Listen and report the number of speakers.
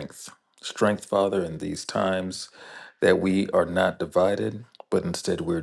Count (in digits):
1